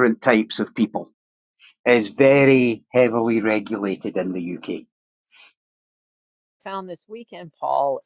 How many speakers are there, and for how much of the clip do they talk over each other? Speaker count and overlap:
2, no overlap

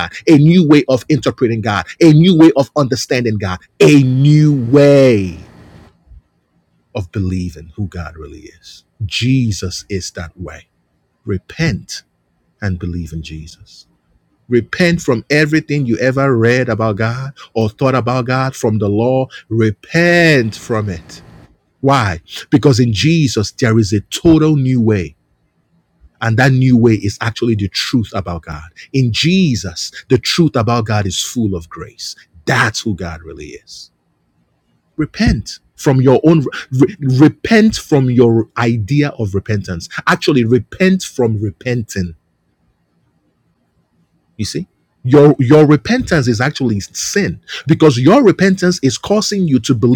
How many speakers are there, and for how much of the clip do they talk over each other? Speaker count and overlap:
1, no overlap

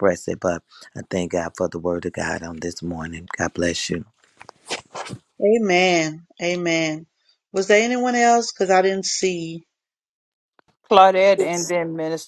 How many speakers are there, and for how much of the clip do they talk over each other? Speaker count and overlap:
3, no overlap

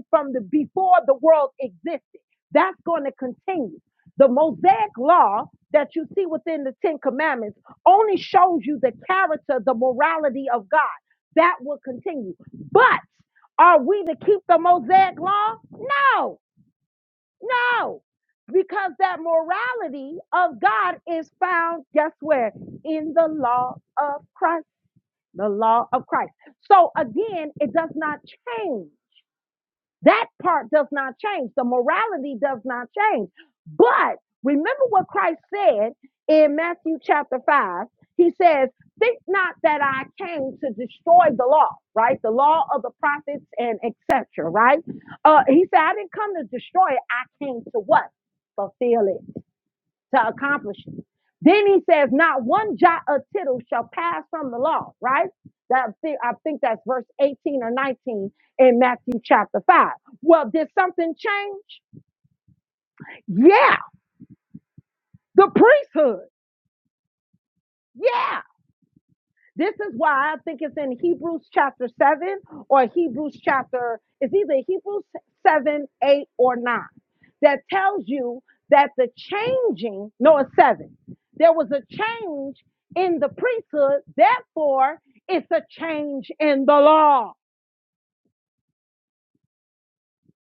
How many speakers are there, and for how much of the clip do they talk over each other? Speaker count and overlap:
1, no overlap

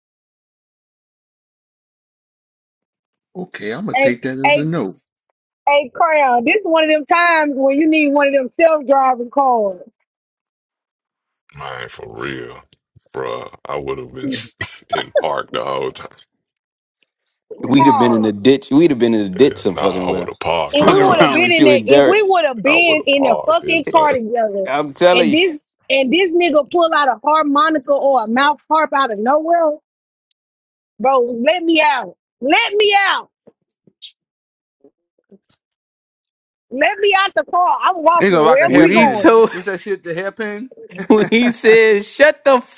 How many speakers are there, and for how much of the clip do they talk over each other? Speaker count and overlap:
5, about 16%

